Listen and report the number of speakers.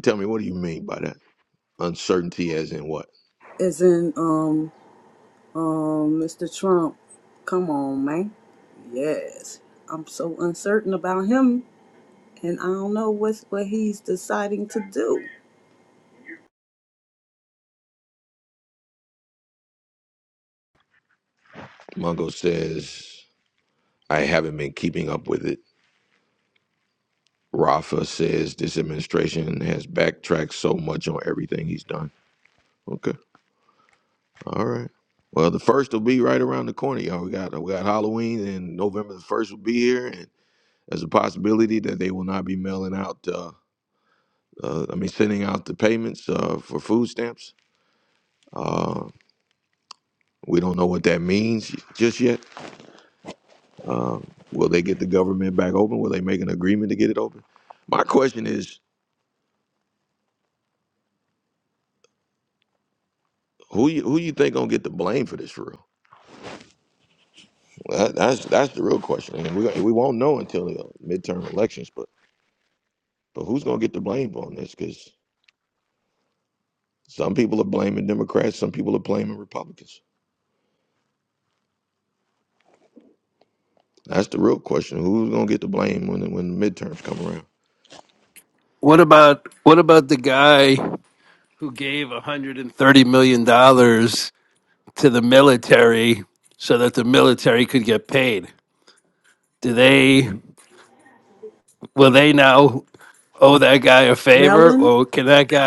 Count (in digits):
3